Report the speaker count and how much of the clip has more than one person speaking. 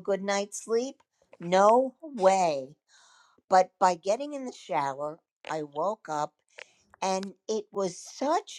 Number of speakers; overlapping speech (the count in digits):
1, no overlap